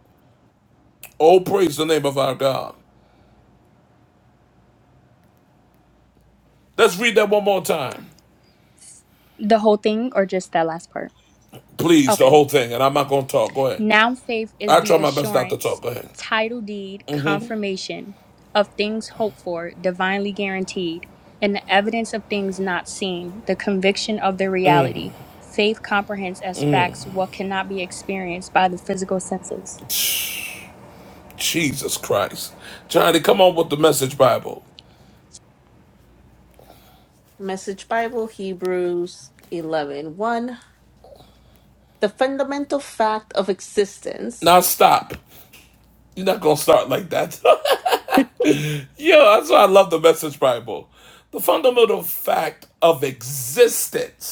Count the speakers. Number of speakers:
three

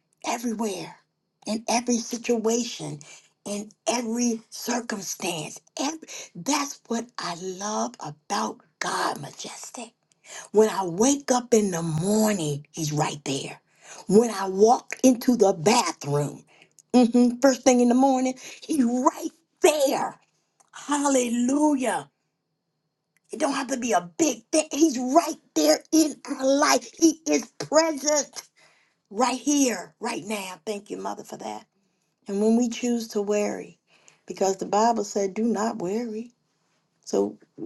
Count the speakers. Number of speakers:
one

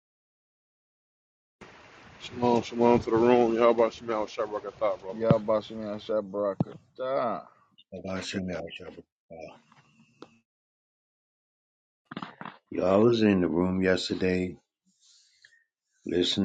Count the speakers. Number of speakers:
three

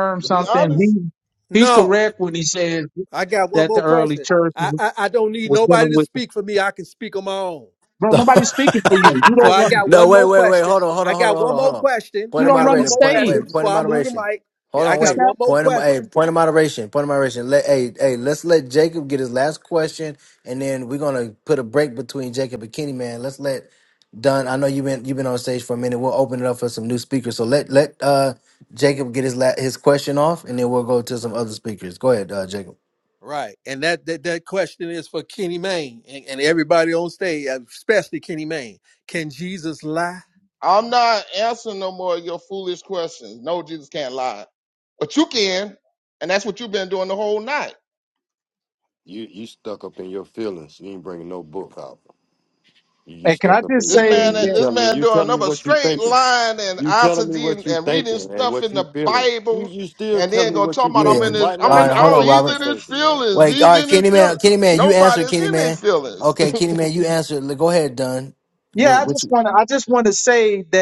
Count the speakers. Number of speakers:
five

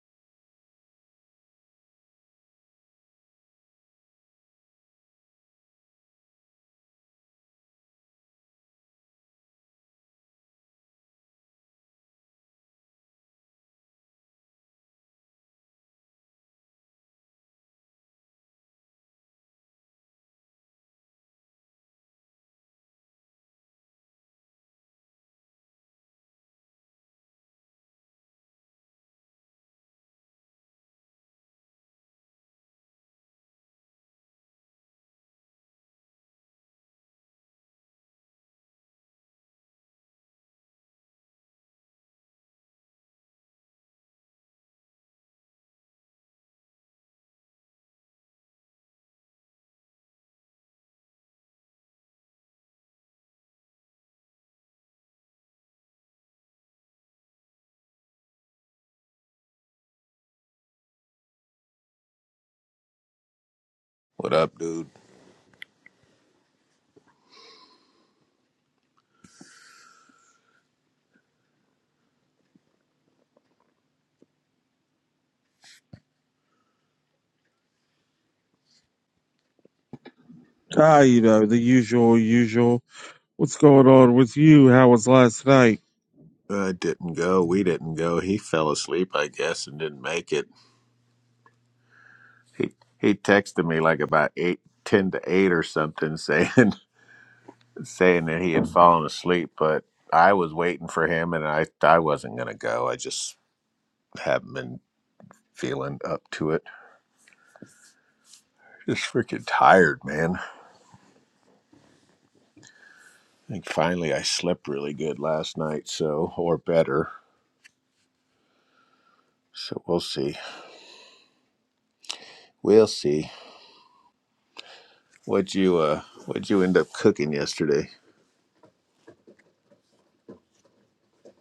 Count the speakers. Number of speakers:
two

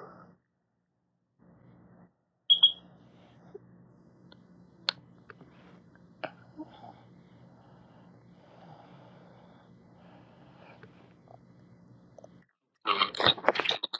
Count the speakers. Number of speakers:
zero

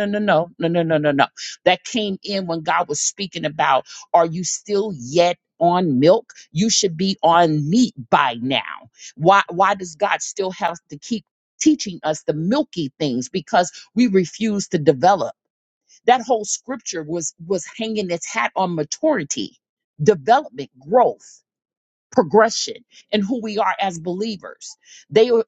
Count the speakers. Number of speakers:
one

